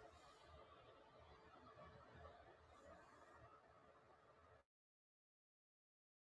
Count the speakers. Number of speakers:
zero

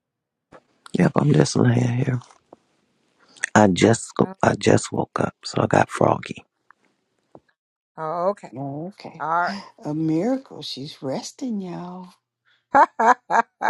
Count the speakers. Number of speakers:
three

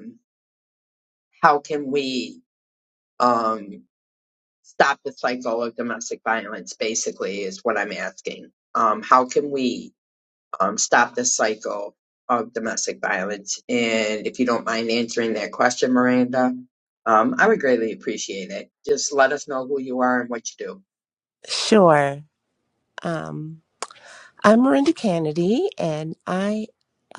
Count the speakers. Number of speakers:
two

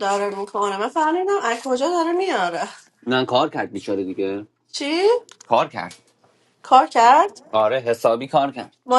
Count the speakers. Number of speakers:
two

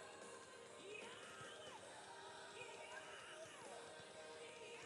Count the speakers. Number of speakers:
zero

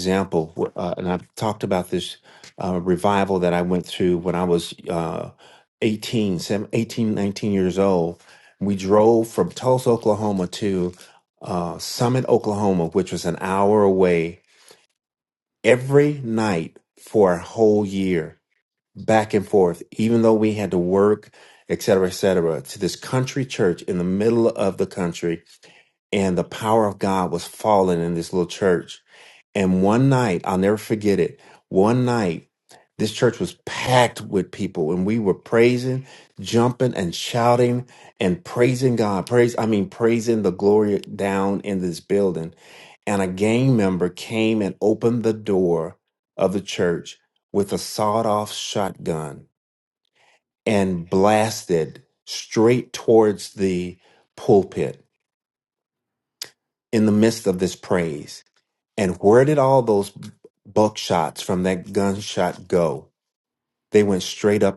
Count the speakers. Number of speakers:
one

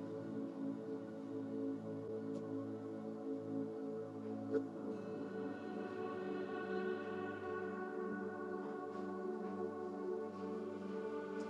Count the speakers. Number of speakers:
zero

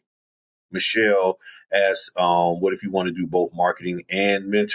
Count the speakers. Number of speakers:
one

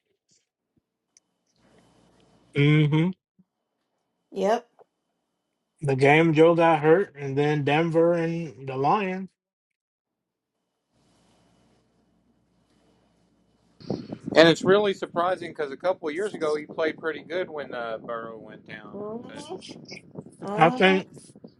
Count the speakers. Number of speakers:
three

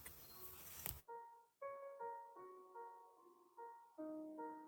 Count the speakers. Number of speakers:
zero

